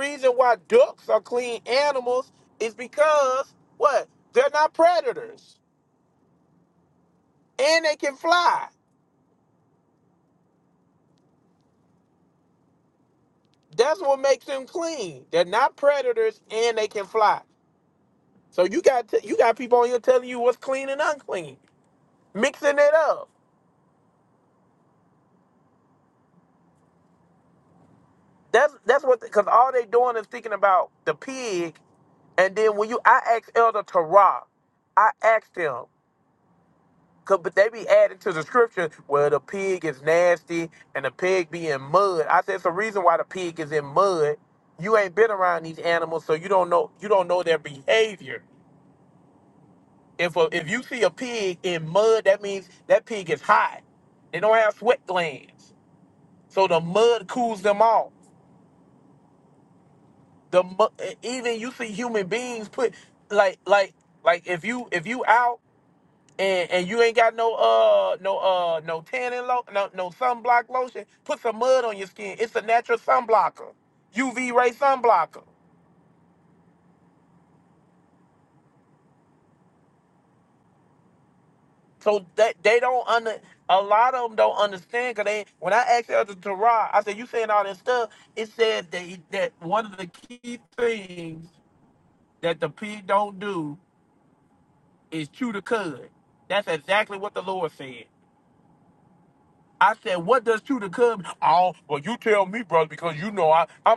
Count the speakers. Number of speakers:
1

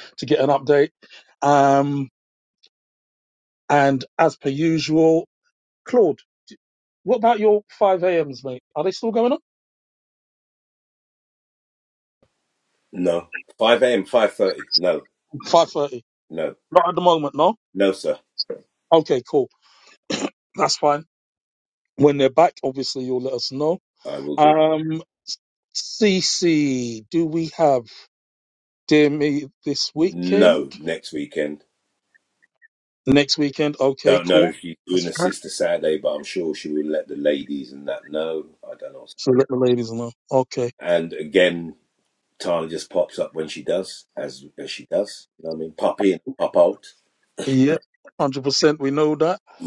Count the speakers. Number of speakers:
2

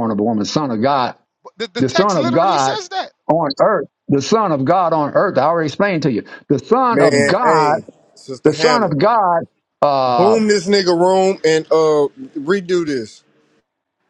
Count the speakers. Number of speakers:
3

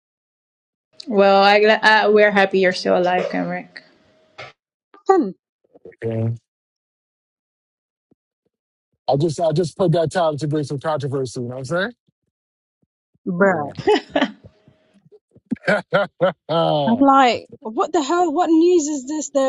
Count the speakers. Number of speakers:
3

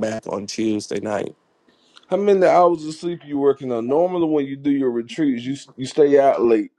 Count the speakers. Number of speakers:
2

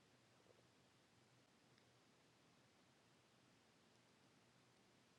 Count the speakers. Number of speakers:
0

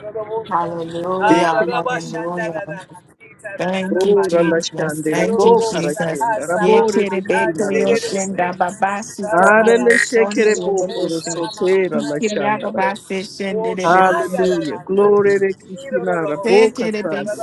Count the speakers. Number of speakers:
3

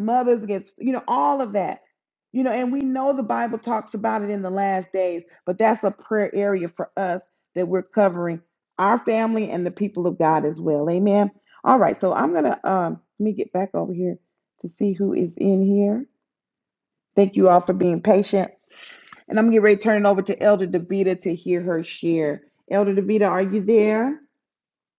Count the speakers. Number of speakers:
1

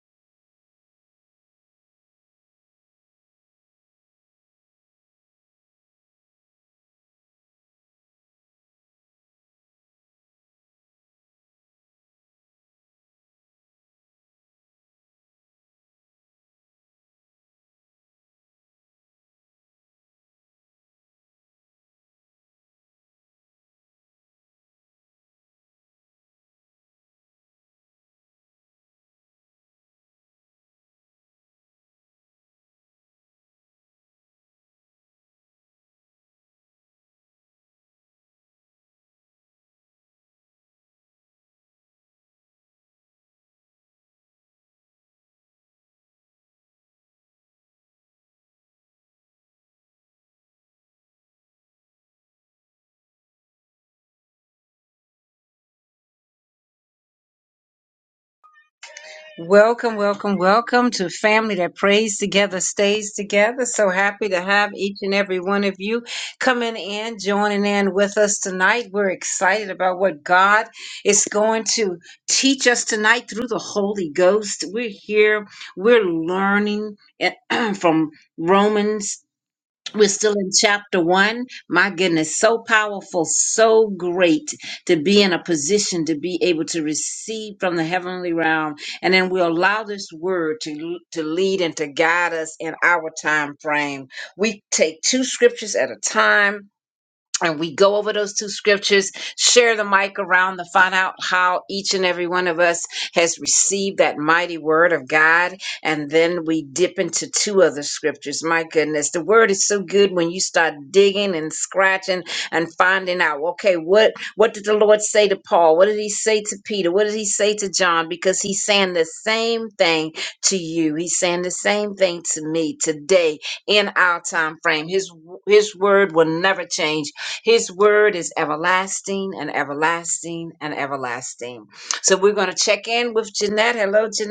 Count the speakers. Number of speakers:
1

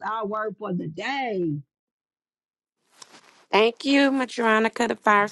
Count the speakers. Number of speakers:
2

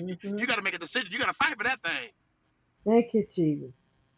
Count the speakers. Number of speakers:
2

